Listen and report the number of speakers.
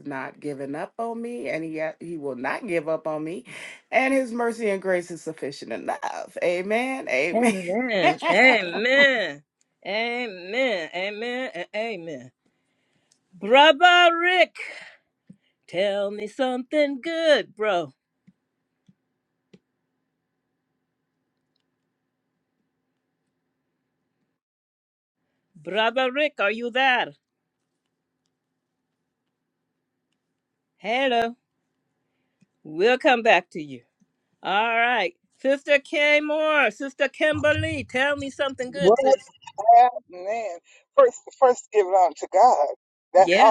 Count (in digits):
3